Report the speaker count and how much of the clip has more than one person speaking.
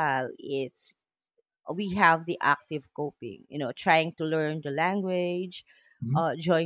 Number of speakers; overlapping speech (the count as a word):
one, no overlap